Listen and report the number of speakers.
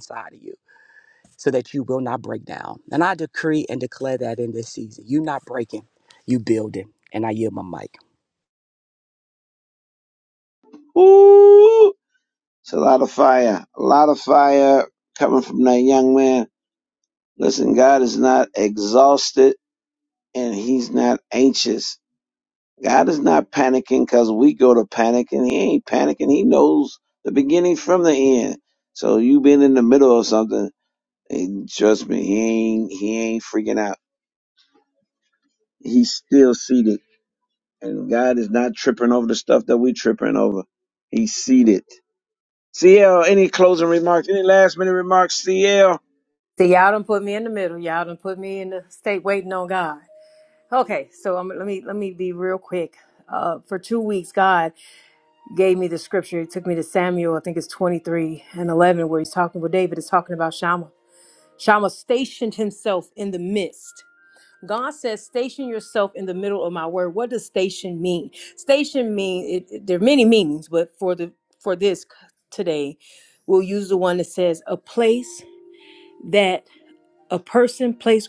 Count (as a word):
three